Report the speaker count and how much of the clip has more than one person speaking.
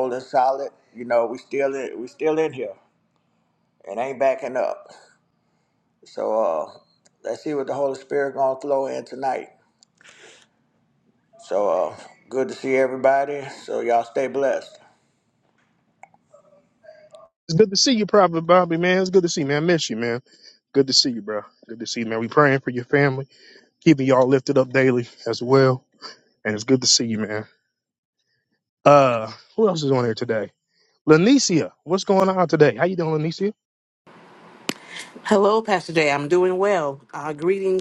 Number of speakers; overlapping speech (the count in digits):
3, no overlap